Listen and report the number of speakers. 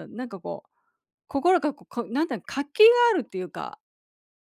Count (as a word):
one